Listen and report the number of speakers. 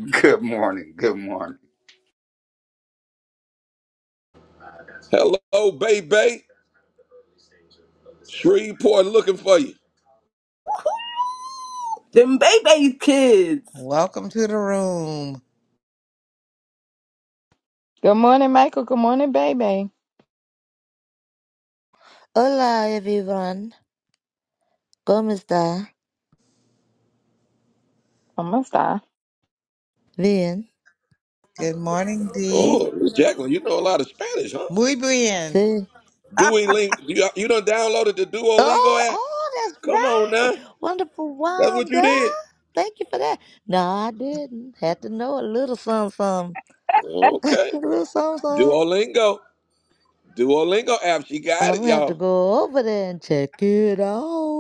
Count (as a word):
six